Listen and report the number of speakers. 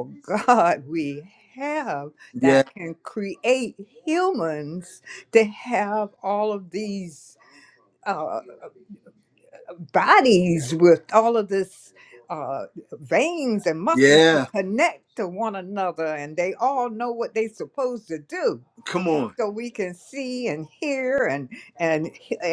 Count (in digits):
2